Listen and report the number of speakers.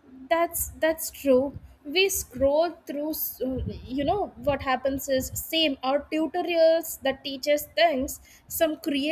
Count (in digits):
1